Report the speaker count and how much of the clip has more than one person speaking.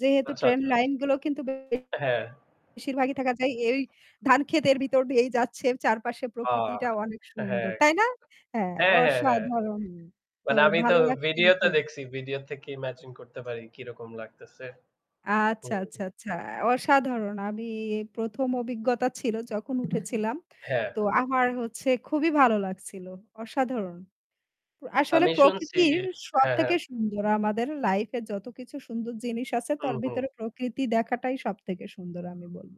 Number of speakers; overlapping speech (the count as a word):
two, about 15%